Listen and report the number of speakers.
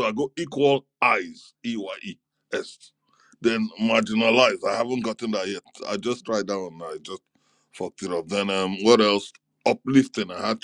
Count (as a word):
one